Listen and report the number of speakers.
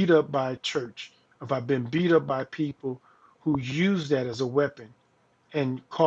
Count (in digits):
1